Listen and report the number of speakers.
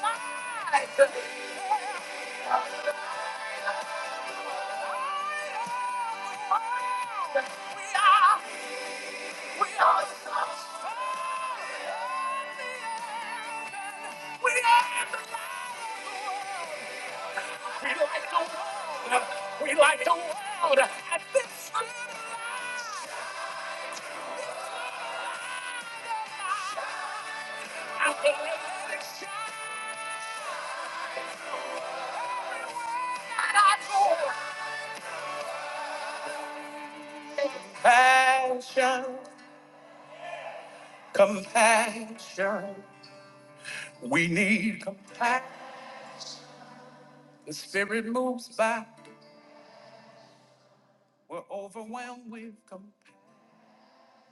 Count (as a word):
one